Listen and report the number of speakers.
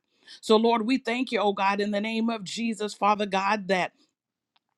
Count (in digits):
1